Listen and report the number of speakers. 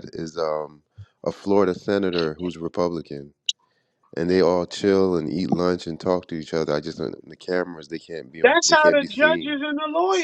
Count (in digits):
2